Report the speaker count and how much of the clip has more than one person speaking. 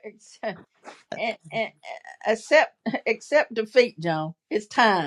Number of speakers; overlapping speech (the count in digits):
1, no overlap